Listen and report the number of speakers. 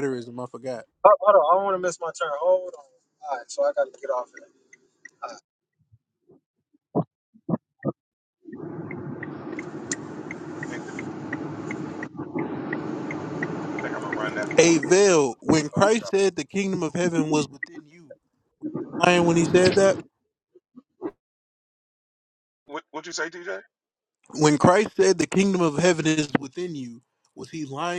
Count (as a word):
three